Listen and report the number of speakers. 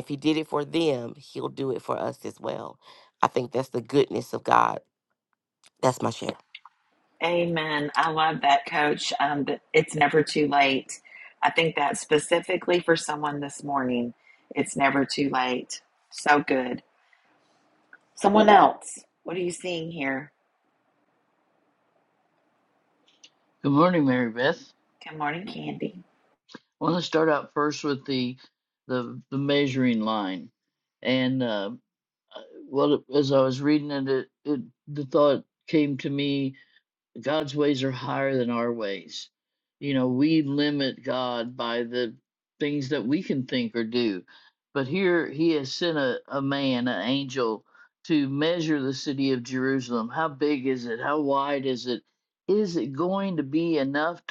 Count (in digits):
3